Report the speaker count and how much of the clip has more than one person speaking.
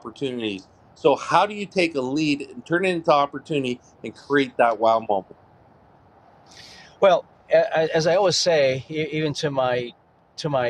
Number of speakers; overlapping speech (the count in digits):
2, no overlap